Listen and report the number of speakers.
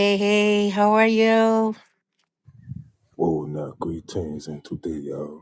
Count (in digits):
2